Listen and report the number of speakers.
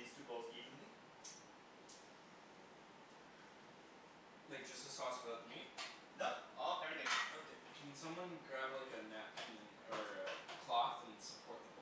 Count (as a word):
two